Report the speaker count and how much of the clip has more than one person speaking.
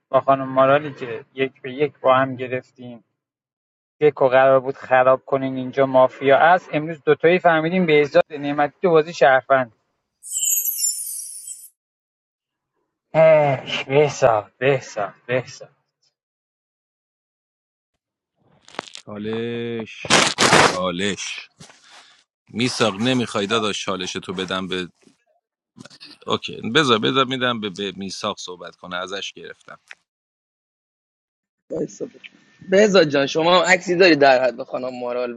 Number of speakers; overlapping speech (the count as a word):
three, no overlap